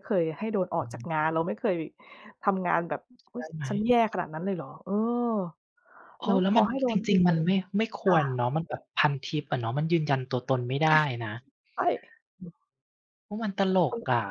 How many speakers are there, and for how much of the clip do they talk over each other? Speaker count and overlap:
two, about 10%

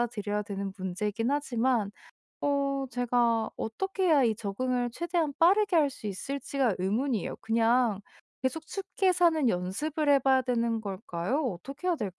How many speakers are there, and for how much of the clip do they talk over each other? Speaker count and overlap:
one, no overlap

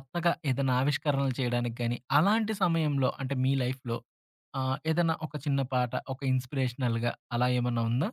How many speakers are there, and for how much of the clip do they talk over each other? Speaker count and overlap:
one, no overlap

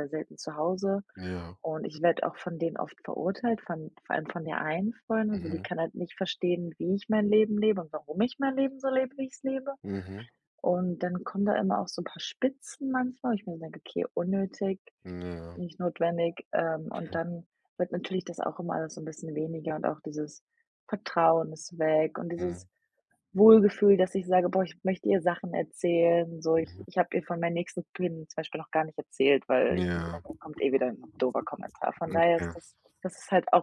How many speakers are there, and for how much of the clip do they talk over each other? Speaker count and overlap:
two, about 5%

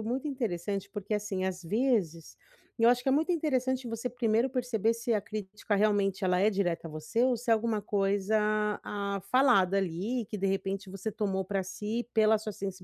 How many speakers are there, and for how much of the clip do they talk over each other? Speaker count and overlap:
one, no overlap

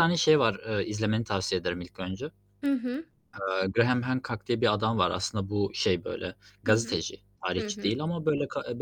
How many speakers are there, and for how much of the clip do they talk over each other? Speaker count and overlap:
two, about 8%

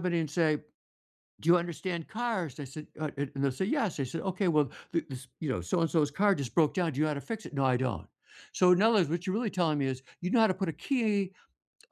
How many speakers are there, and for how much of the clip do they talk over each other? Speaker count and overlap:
one, no overlap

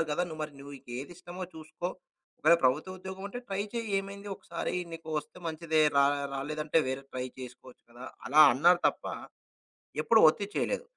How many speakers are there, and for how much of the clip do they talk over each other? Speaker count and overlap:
one, no overlap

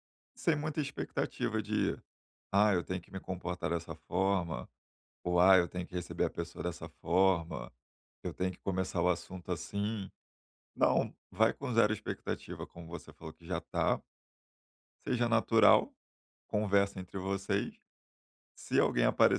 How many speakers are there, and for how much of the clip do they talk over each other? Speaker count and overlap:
one, no overlap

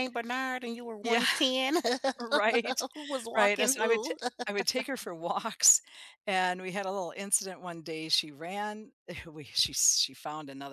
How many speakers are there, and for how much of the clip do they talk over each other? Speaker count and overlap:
two, about 10%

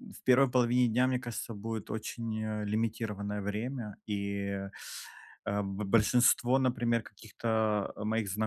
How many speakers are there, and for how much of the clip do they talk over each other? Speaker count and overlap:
one, no overlap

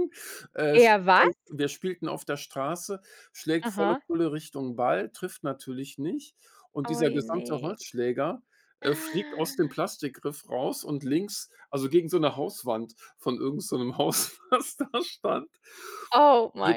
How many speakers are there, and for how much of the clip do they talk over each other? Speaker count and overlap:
two, about 12%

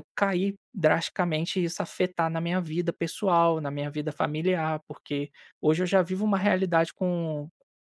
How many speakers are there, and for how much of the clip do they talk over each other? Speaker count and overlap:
one, no overlap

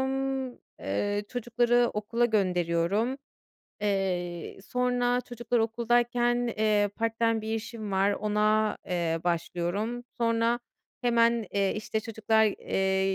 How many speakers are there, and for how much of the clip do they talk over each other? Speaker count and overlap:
one, no overlap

